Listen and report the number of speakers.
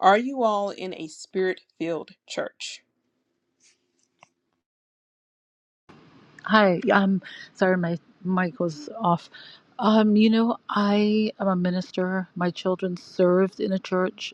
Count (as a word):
two